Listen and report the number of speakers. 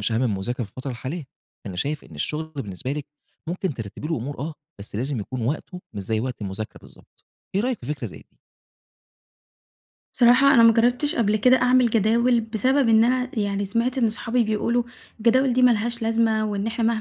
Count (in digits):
2